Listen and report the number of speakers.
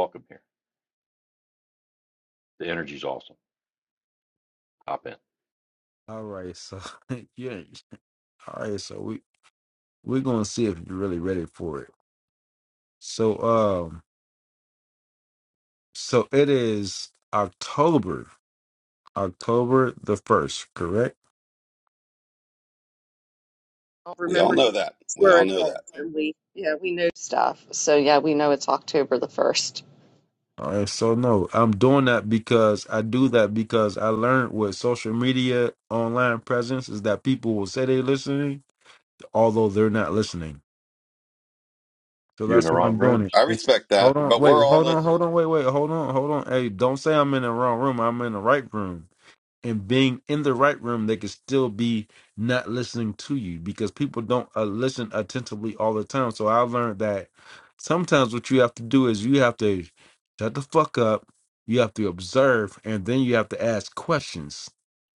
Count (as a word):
four